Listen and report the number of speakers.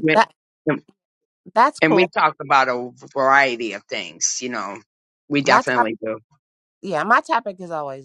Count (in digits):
2